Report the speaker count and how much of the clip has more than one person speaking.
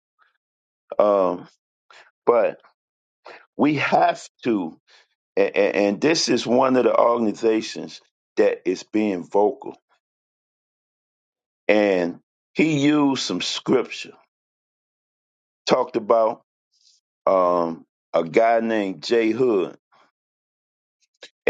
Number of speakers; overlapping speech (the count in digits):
1, no overlap